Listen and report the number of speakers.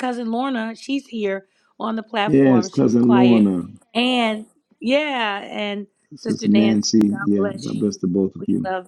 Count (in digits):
2